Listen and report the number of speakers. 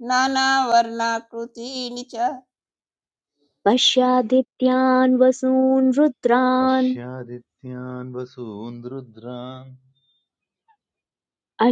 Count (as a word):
three